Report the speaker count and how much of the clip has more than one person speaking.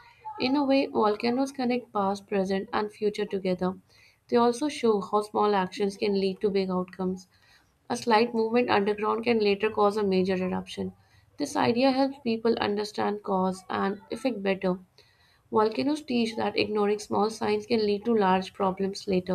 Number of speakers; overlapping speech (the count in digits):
1, no overlap